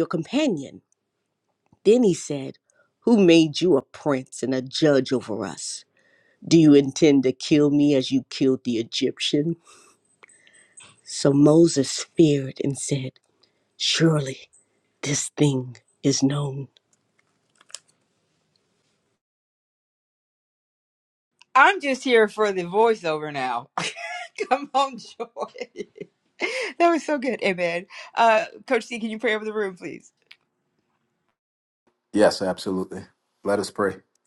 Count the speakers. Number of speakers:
3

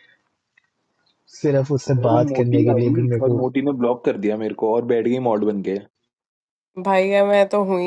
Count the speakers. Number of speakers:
3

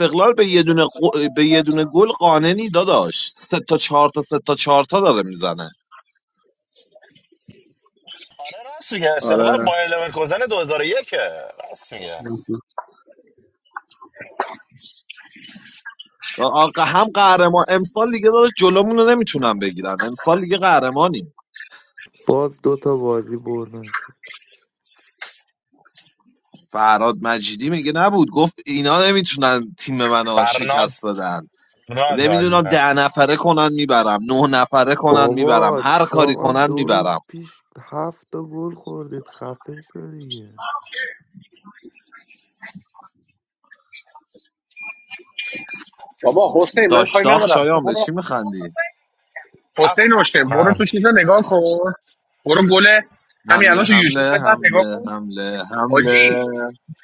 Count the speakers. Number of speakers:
4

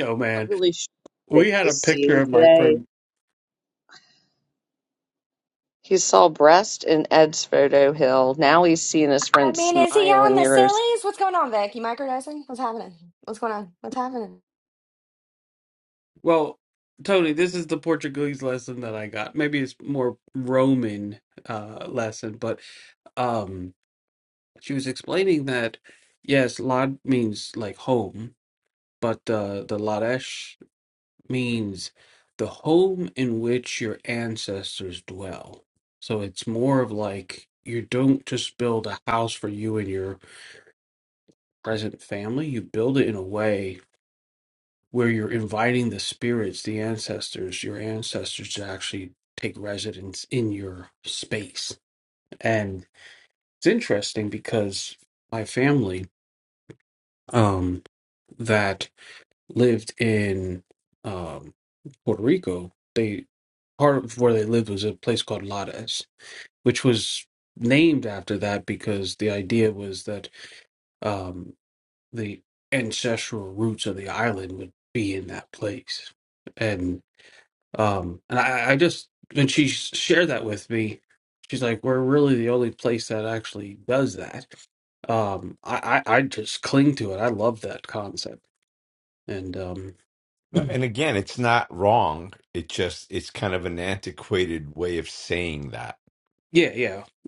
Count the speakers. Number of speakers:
4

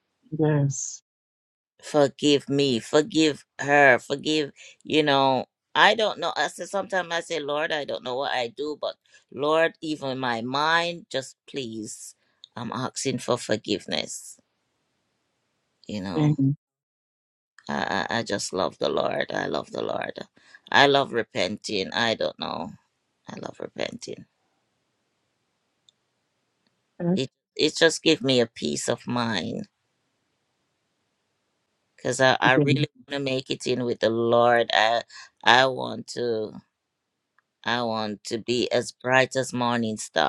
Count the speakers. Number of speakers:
2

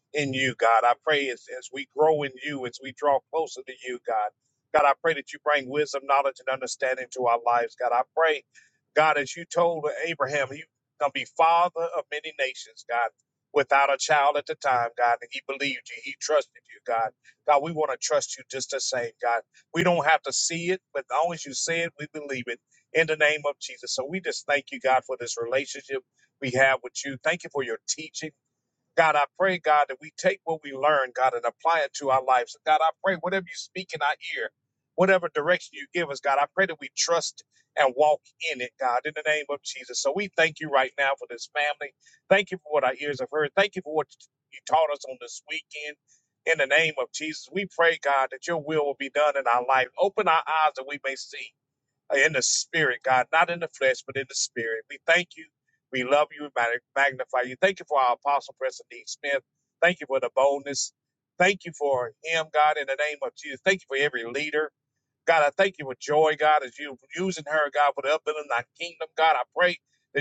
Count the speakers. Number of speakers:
1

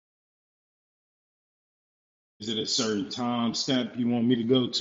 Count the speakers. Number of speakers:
1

